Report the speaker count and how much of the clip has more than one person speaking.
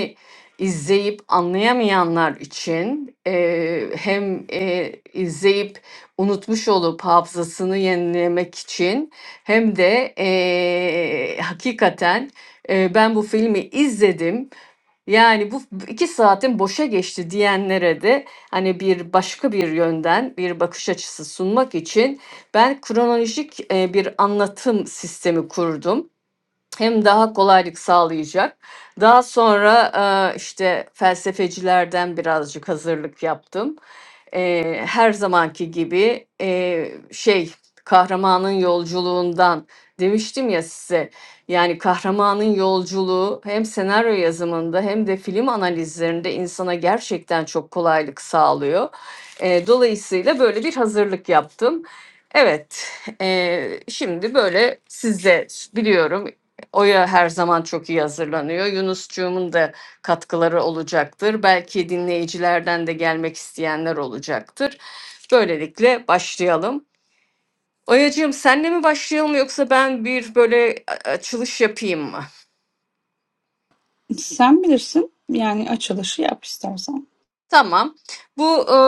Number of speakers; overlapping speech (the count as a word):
two, no overlap